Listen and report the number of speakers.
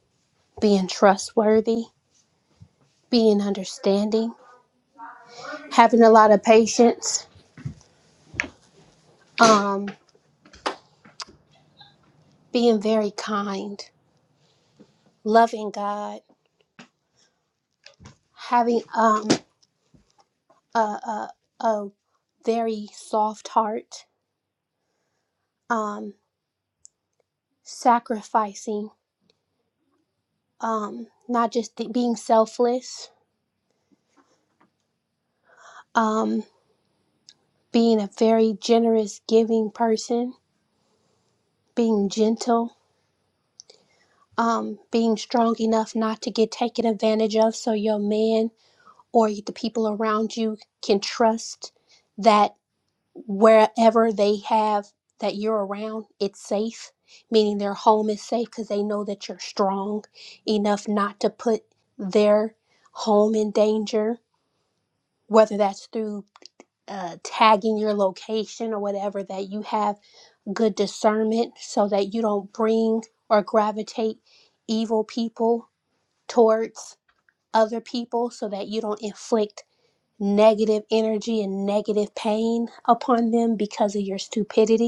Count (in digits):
1